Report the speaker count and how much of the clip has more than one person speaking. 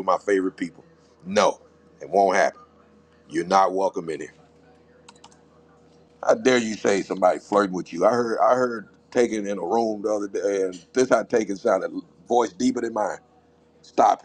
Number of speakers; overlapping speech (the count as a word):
one, no overlap